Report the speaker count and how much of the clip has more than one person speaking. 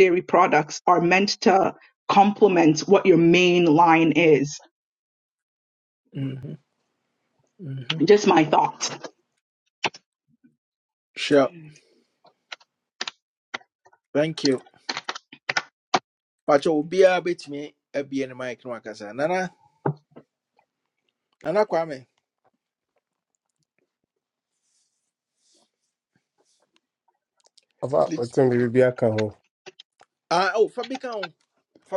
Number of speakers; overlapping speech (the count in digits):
3, about 1%